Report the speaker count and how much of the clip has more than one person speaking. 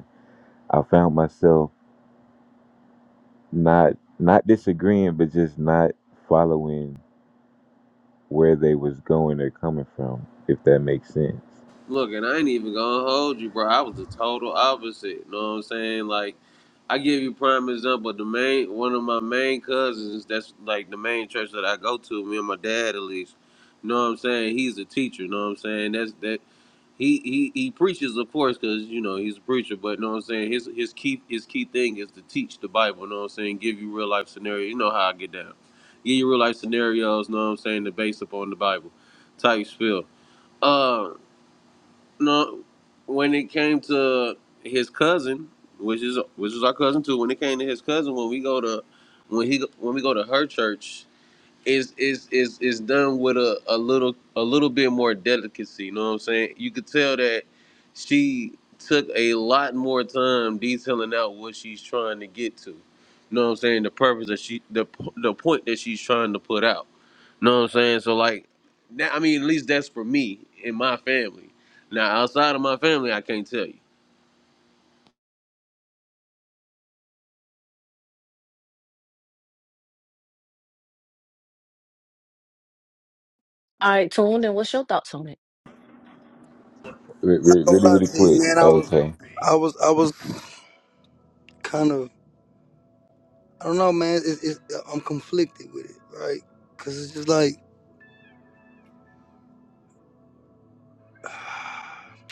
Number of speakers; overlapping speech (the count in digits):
4, about 1%